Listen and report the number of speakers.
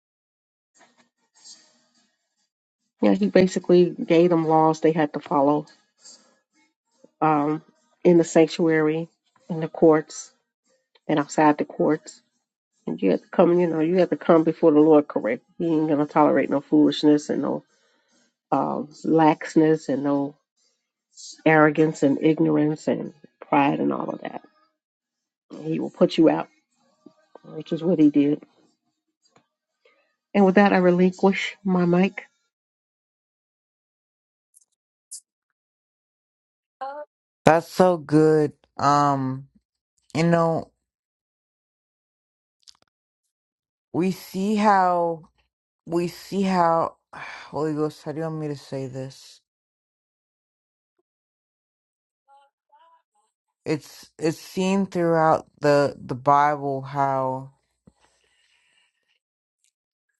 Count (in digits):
2